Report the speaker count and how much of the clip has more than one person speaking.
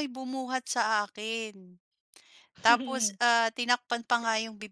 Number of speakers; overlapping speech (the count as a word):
one, no overlap